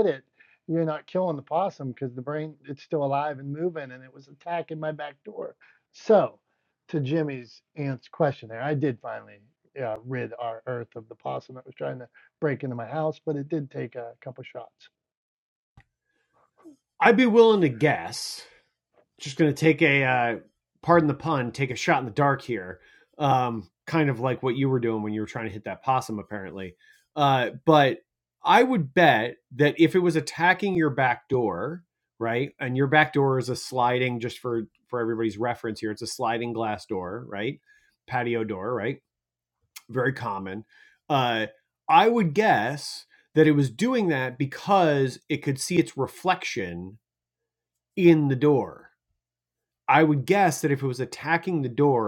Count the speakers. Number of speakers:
two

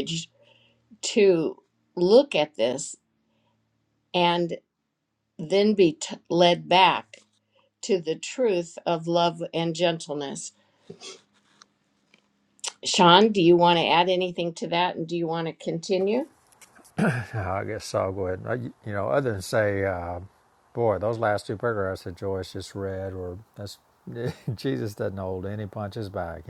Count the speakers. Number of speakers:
two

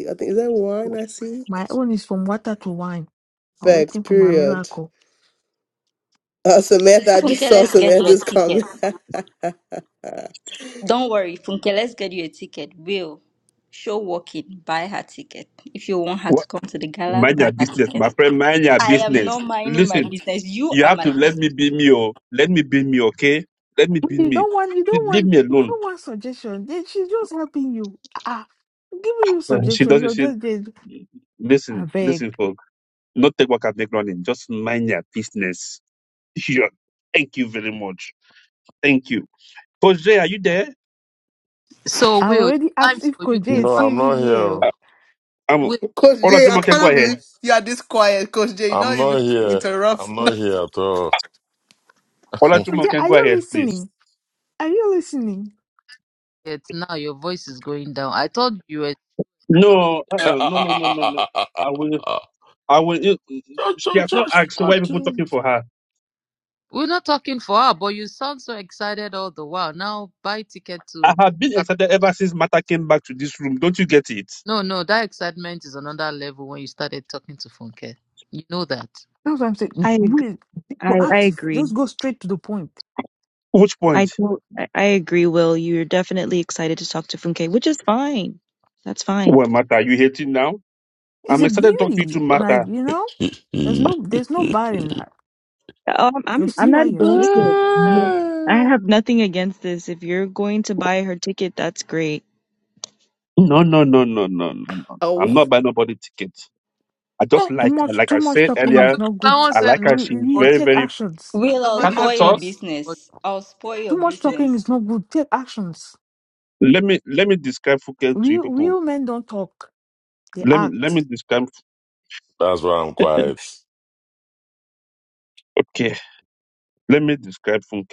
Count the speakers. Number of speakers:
seven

